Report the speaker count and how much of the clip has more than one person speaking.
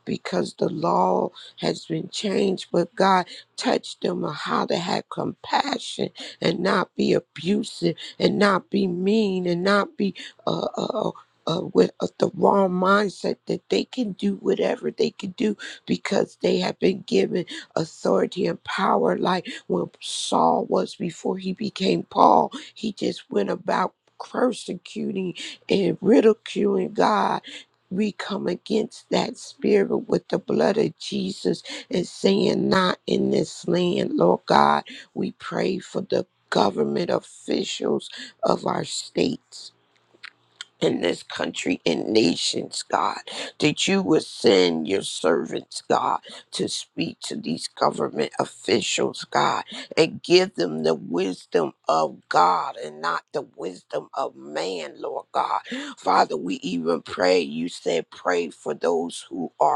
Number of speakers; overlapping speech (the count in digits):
1, no overlap